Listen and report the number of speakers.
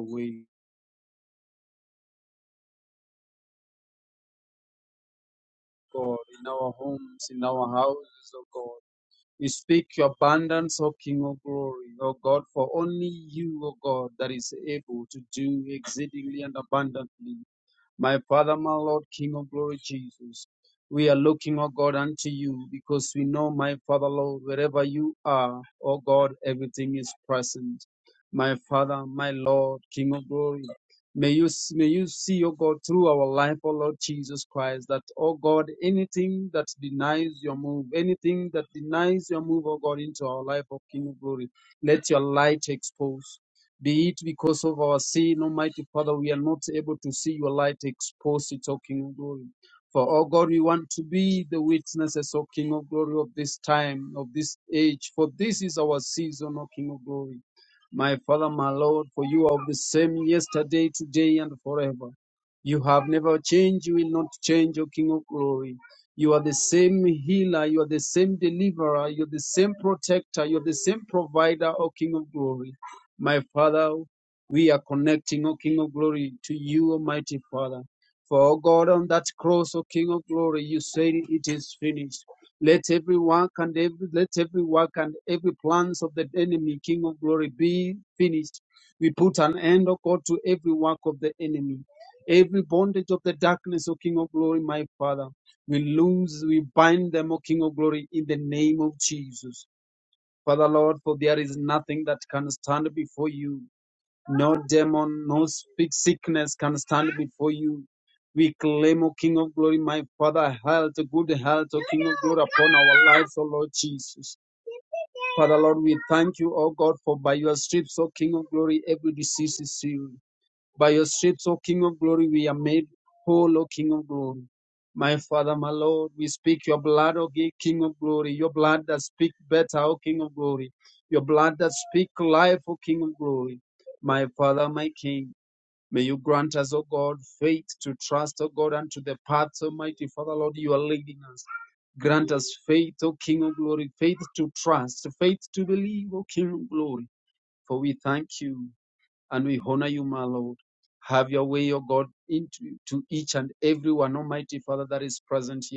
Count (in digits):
1